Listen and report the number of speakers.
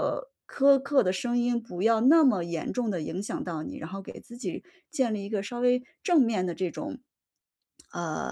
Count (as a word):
one